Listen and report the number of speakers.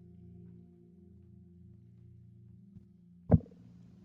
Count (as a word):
zero